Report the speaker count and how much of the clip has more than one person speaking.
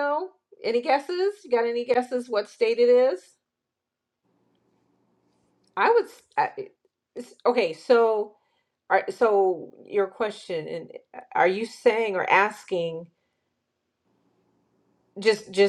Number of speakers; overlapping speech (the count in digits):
1, no overlap